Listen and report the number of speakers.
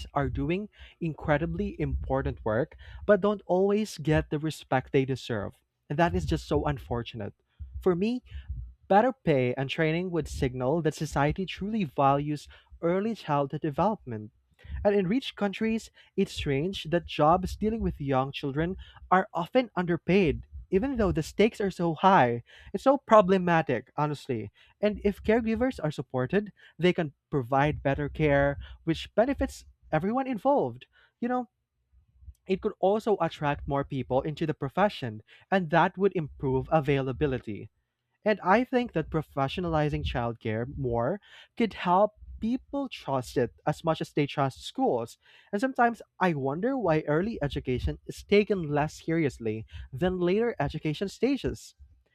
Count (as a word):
one